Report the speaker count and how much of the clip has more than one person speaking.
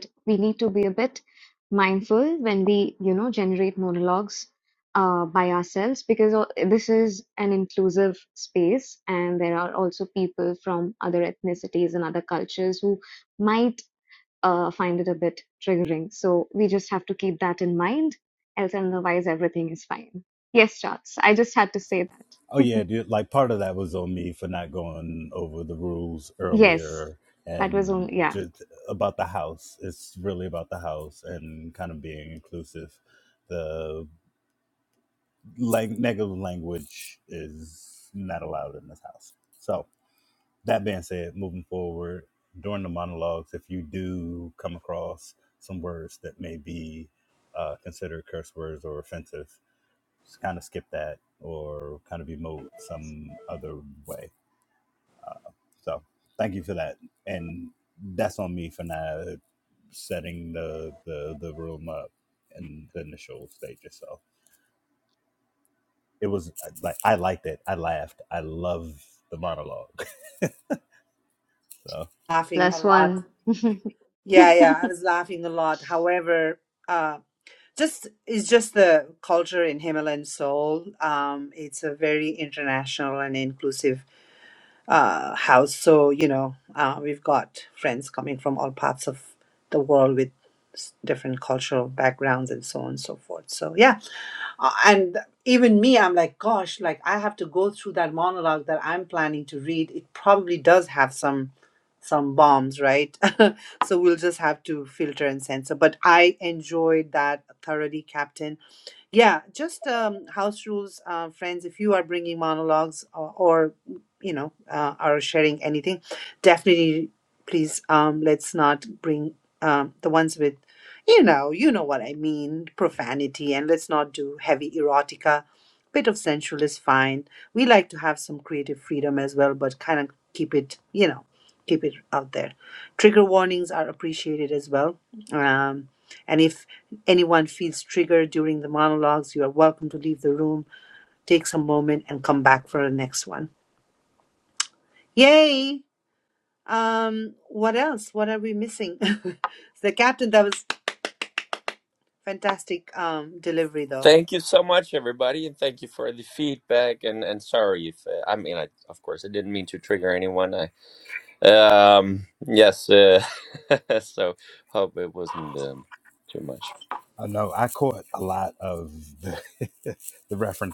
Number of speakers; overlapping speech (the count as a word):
four, about 1%